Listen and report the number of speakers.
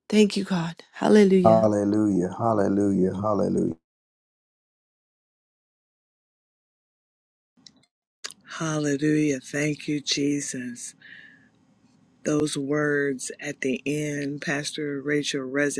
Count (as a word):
three